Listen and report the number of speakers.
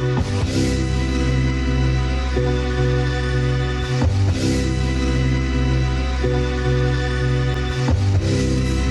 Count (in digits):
0